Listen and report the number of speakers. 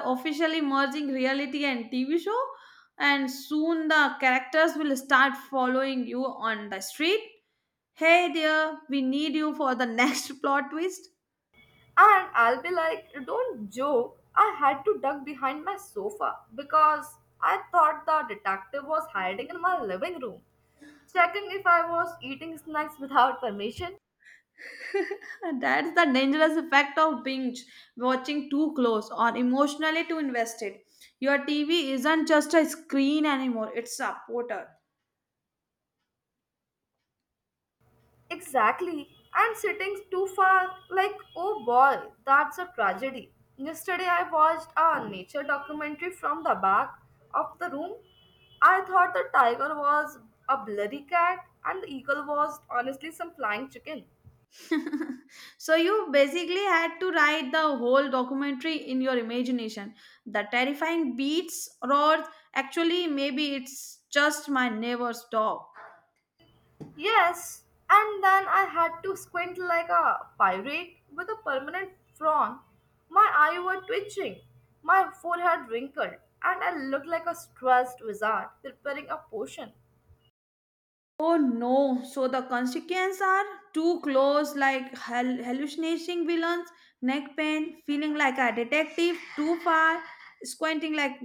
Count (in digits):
2